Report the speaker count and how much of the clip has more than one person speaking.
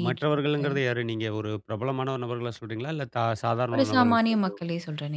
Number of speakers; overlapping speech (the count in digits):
2, about 24%